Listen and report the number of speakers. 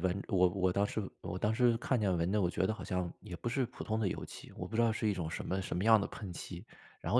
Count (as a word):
one